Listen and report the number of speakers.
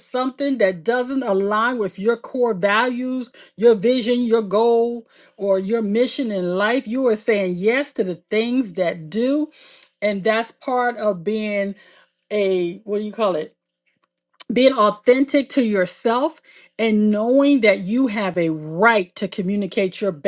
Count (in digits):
1